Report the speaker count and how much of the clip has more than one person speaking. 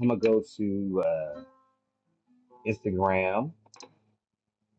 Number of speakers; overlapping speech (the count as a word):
one, no overlap